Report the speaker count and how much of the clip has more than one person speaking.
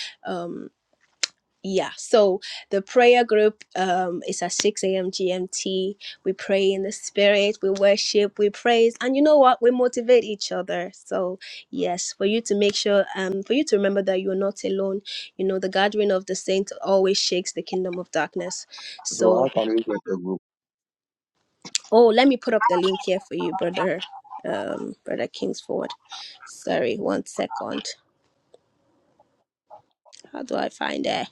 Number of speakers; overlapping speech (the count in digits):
2, about 1%